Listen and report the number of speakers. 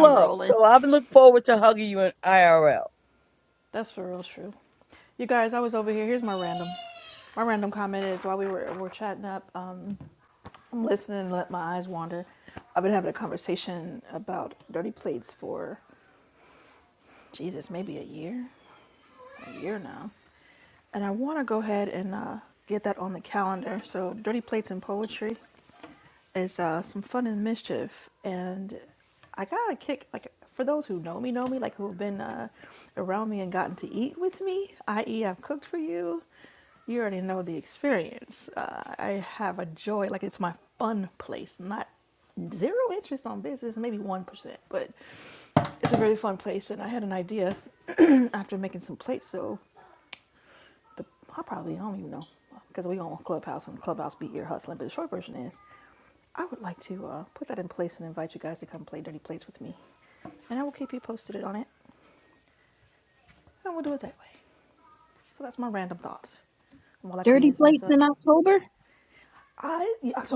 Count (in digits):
3